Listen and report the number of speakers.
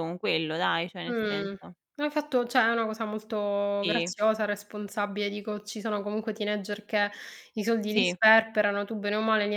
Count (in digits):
2